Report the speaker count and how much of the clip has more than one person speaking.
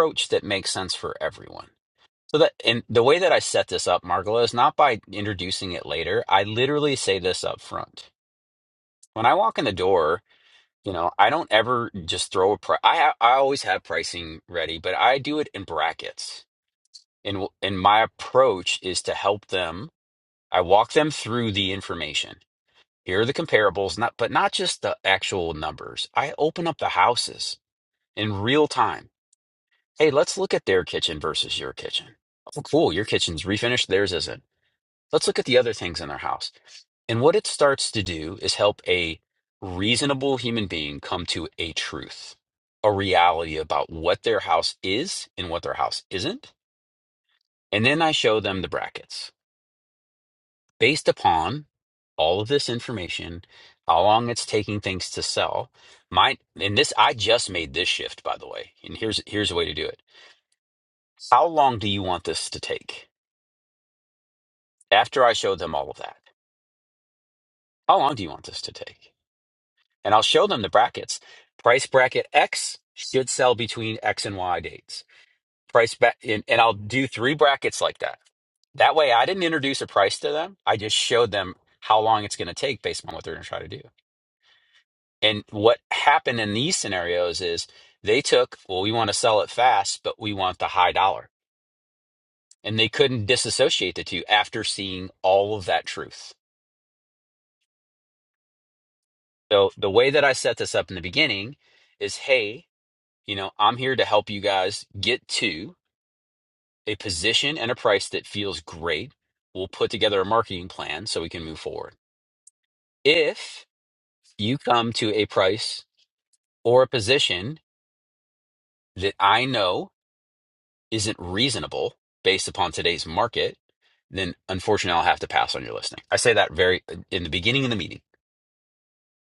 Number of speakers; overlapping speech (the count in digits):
1, no overlap